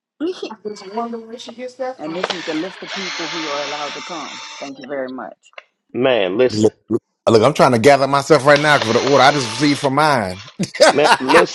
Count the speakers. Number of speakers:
four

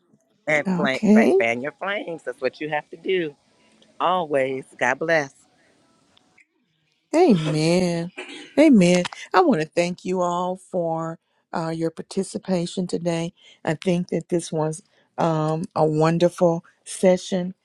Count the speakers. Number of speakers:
two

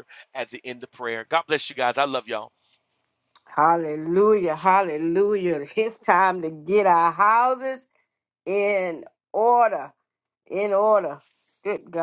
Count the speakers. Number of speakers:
two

